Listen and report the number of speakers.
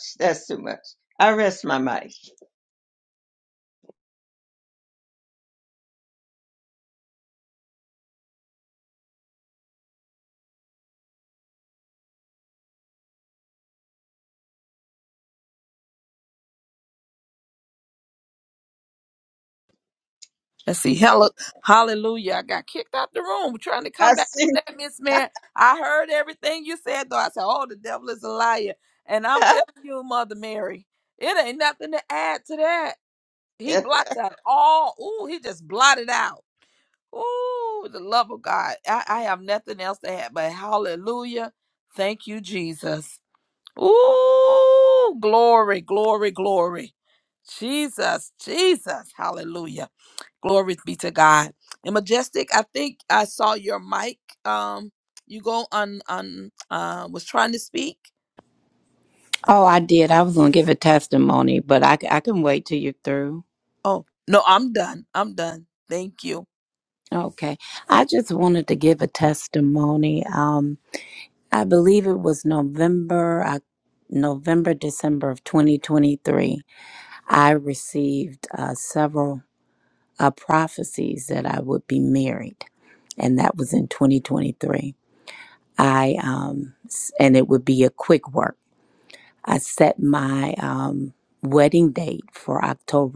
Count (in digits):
3